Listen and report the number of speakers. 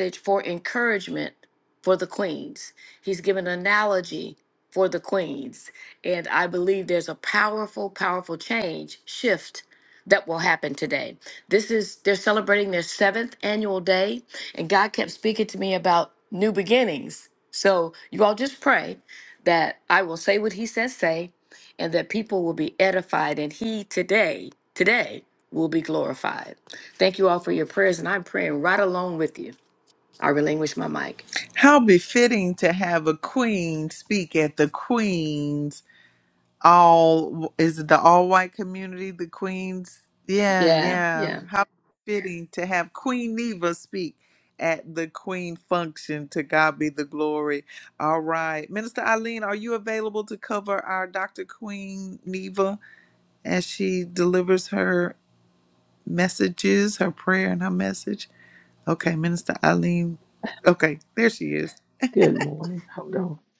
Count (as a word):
three